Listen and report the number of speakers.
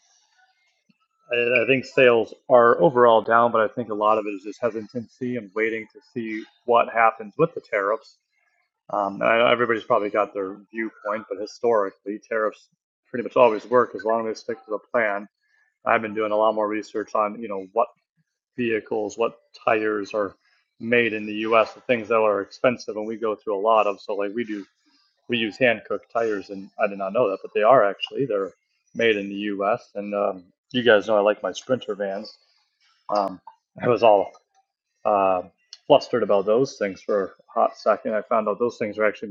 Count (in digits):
1